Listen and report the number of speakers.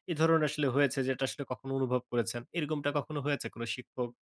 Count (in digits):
1